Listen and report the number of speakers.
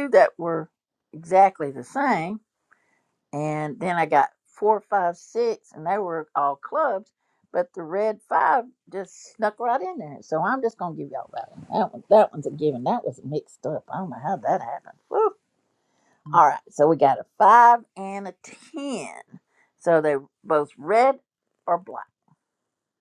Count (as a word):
one